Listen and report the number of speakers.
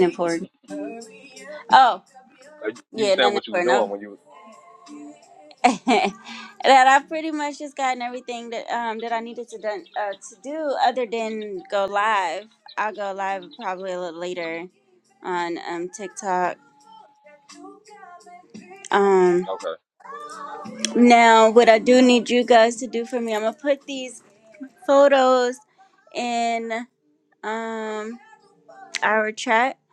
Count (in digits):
2